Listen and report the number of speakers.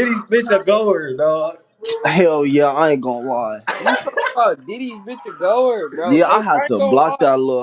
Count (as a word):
three